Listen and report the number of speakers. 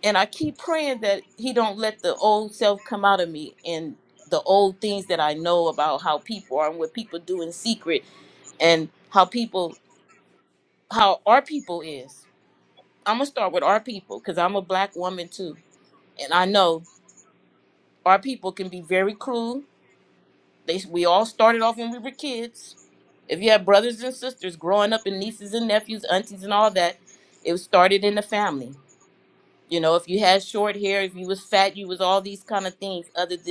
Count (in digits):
1